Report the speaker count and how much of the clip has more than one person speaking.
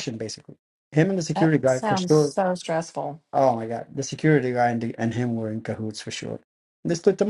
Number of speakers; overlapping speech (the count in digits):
2, about 9%